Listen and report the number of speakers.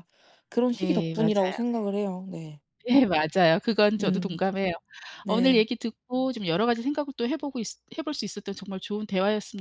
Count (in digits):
2